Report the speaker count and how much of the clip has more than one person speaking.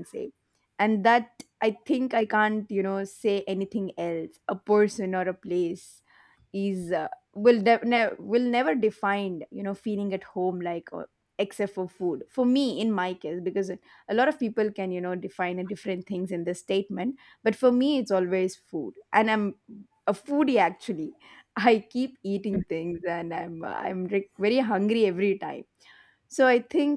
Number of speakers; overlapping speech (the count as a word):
one, no overlap